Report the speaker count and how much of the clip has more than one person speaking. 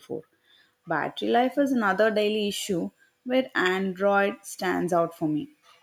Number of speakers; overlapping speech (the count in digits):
1, no overlap